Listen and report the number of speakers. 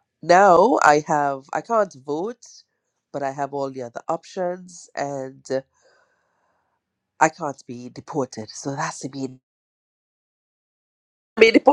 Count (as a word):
one